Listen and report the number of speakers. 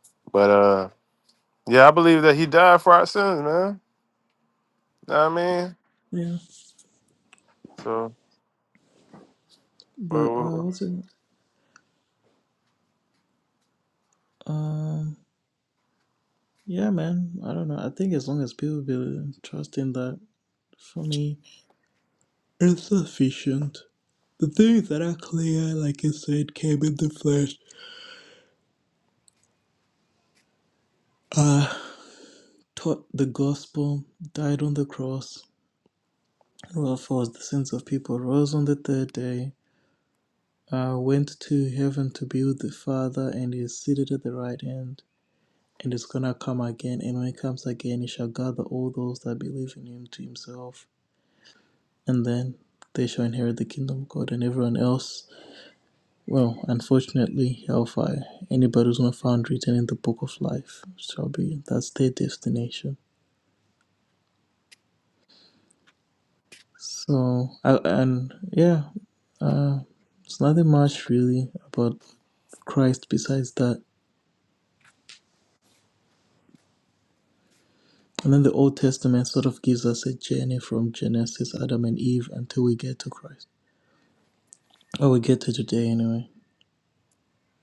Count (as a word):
two